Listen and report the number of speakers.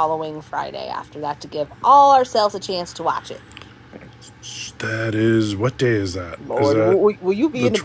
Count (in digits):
3